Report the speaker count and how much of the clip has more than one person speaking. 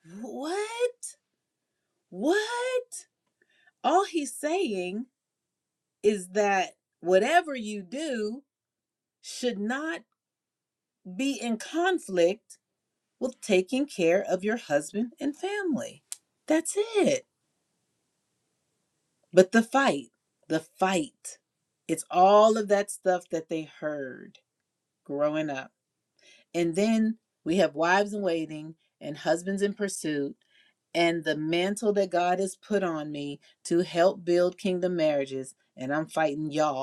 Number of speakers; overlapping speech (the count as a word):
one, no overlap